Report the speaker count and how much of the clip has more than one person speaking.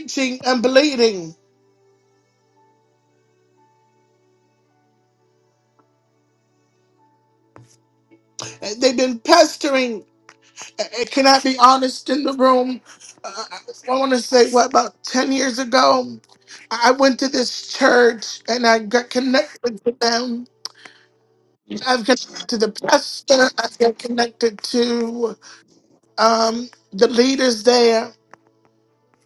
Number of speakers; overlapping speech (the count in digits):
1, no overlap